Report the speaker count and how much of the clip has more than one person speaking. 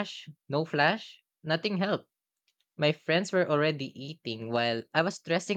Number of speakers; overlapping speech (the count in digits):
1, no overlap